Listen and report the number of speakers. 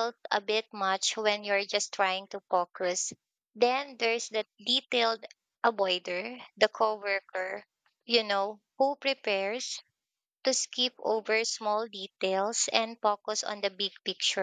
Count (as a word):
one